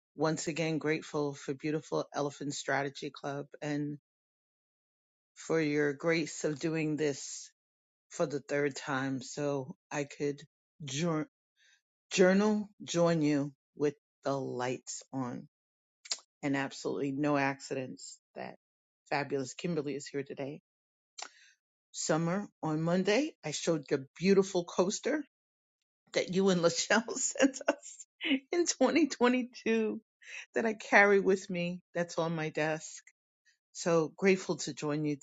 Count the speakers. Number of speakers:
1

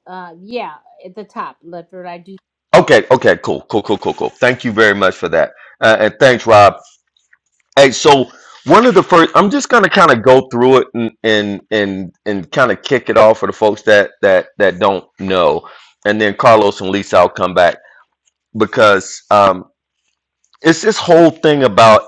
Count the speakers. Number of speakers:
2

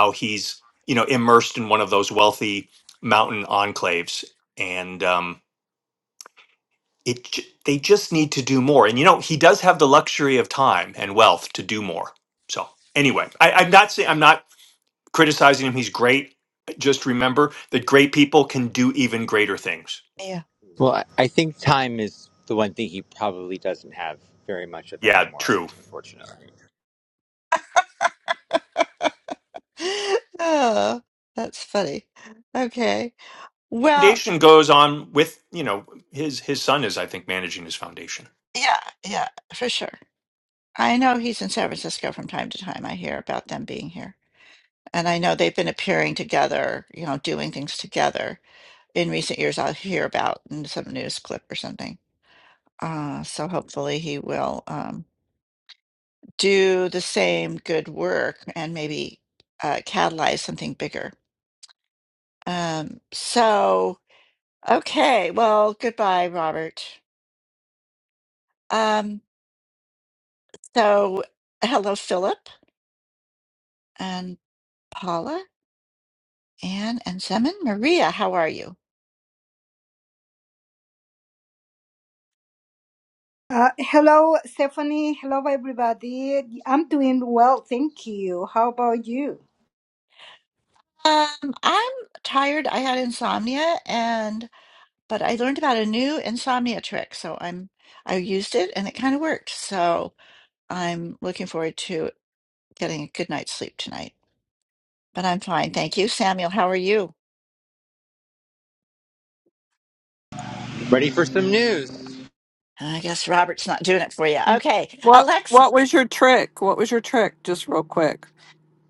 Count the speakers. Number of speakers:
5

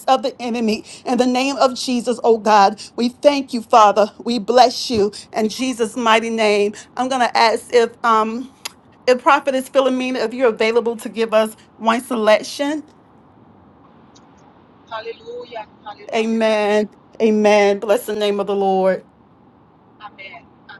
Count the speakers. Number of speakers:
2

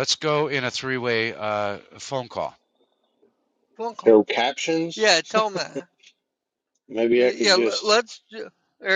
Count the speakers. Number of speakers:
3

